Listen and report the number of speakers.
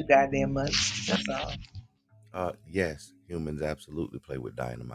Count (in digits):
2